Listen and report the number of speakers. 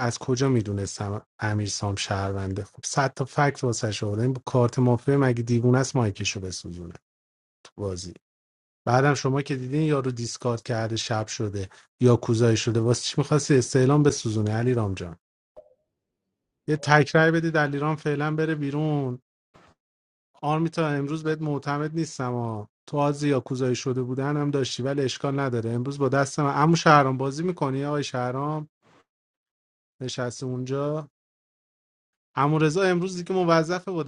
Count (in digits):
1